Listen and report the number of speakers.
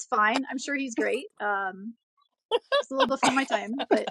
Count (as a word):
one